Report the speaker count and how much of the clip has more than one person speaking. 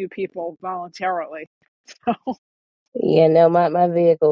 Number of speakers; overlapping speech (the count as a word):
two, no overlap